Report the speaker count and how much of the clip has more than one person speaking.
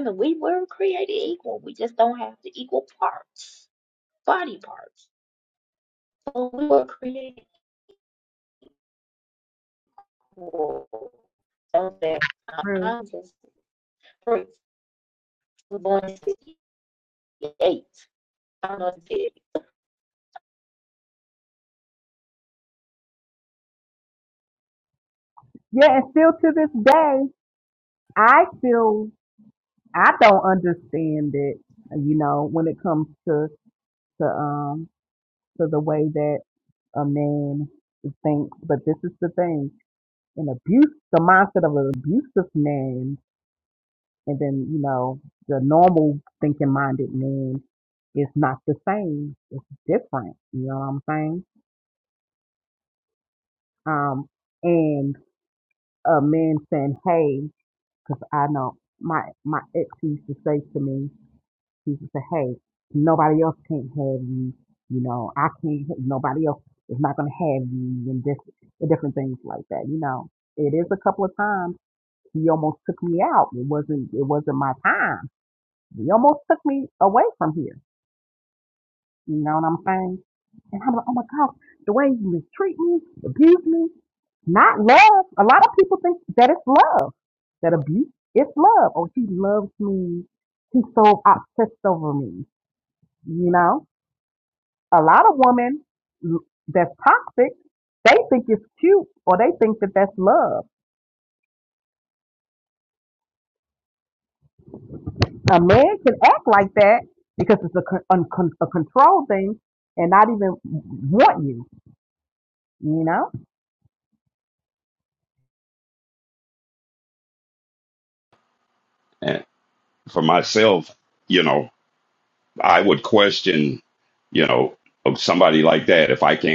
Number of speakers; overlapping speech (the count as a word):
three, under 1%